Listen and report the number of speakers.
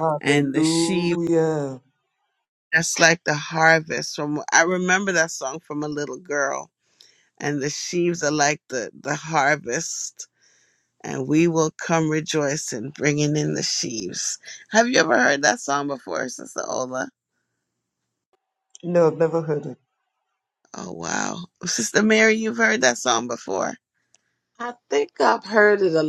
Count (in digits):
3